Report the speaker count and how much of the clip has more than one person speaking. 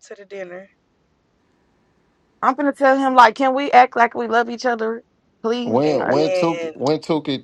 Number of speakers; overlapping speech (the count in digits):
3, about 15%